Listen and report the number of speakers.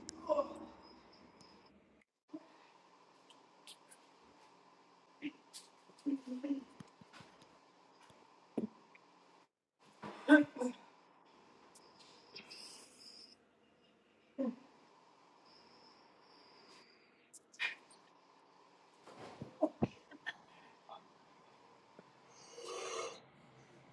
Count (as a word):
zero